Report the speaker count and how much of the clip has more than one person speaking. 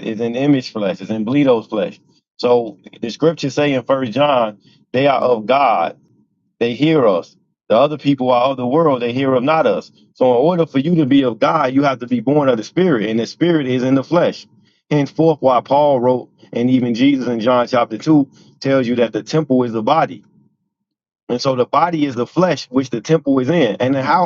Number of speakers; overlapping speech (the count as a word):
one, no overlap